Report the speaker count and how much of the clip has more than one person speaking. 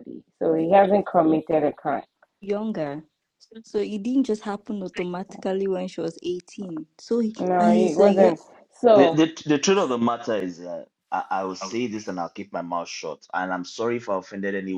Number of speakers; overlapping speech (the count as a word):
three, about 8%